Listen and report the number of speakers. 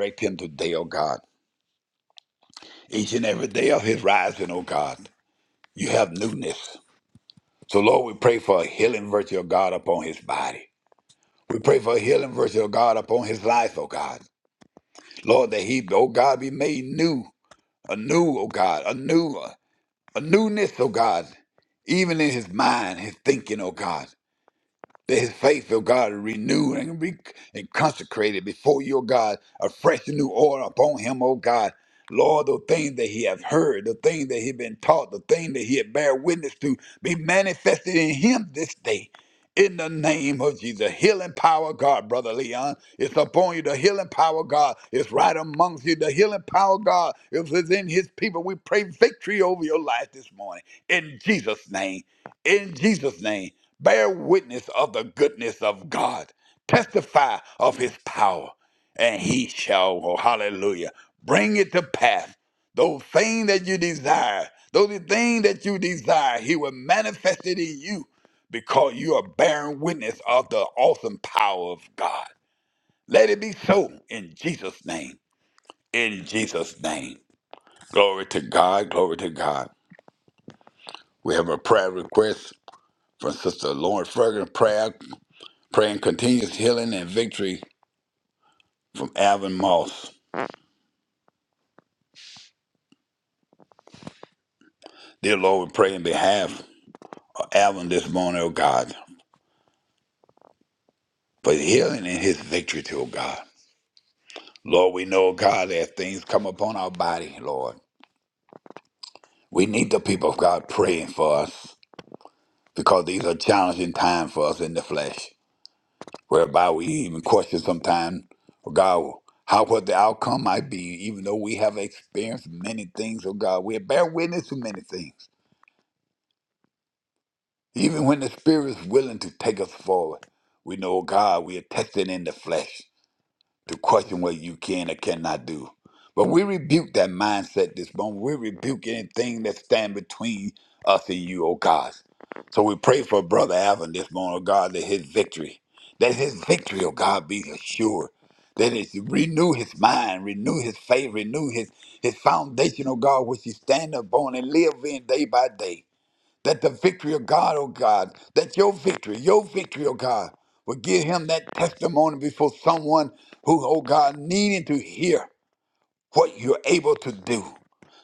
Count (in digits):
1